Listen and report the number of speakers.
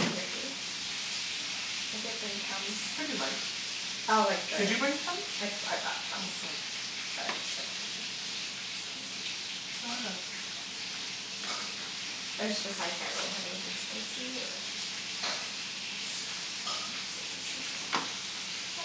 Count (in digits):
2